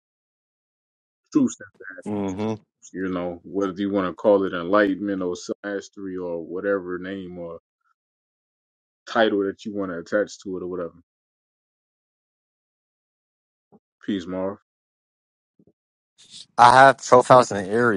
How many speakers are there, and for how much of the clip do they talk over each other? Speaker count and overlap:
2, no overlap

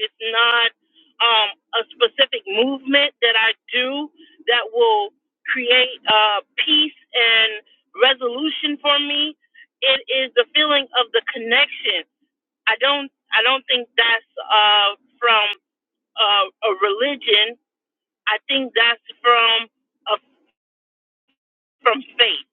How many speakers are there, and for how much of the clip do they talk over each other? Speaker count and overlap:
1, no overlap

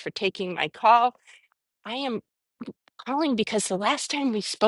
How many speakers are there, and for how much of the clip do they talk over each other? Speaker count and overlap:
1, no overlap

